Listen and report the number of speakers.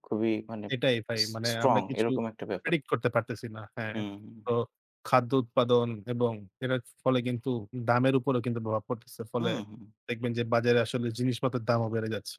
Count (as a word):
two